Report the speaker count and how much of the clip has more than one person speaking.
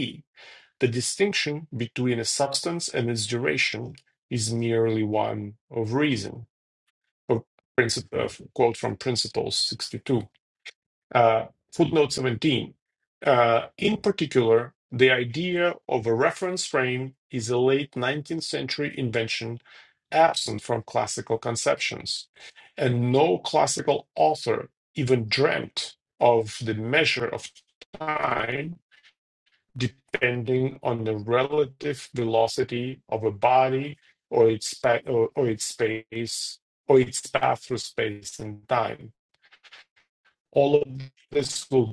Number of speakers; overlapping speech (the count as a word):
one, no overlap